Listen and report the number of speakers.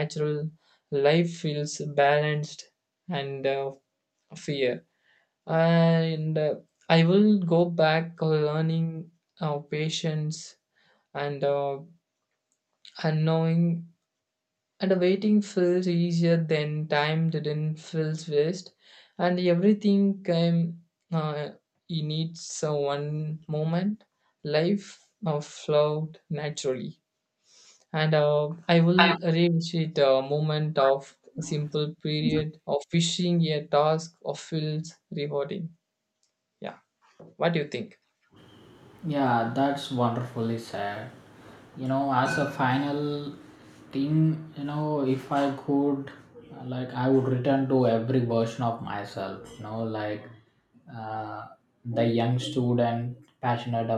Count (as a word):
two